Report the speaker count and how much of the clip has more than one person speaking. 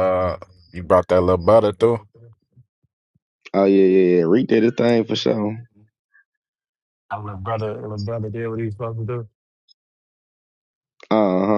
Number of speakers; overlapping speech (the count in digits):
3, no overlap